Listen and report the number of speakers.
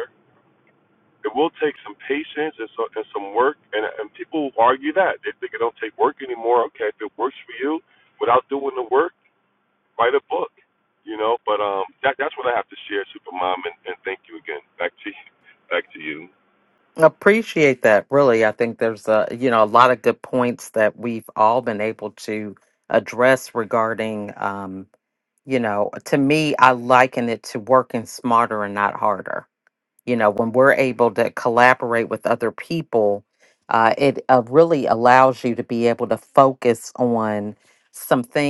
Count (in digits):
2